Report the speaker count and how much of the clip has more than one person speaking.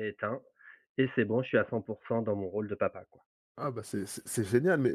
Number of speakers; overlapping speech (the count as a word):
two, no overlap